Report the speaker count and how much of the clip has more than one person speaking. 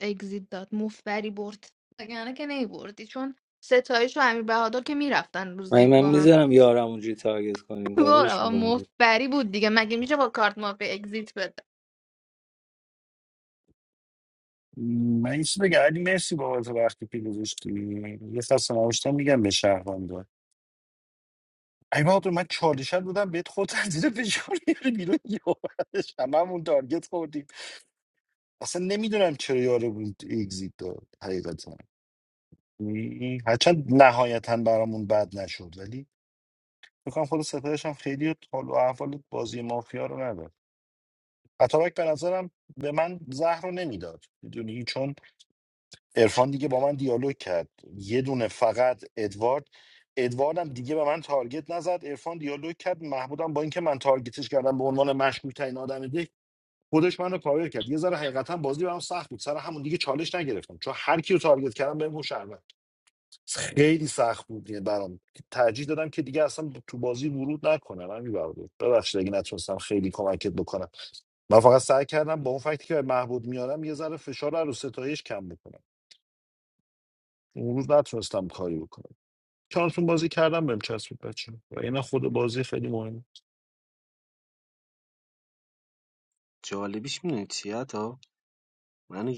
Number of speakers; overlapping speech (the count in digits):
4, about 2%